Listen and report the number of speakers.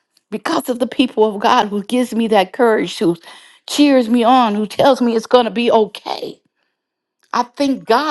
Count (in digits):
1